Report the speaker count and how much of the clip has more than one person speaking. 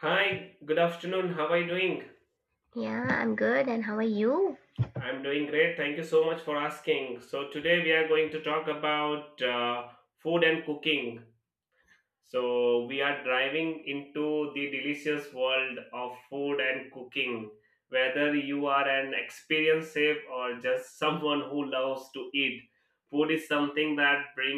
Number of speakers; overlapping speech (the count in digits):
2, no overlap